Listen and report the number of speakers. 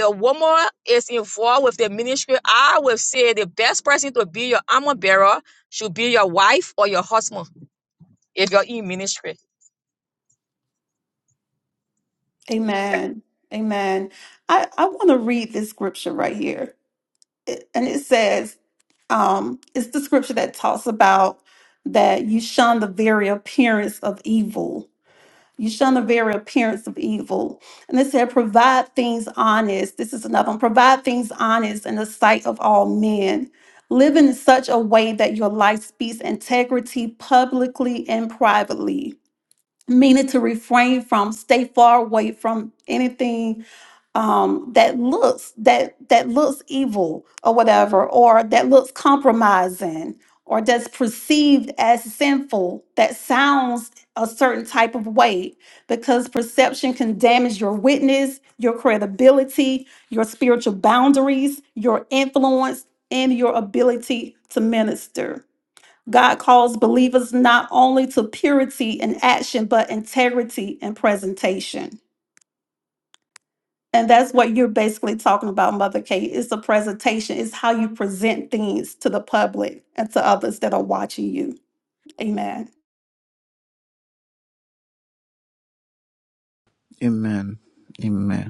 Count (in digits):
3